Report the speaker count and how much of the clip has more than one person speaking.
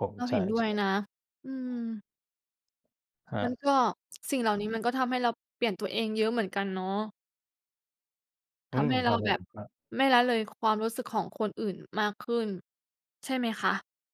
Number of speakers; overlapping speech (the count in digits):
2, about 9%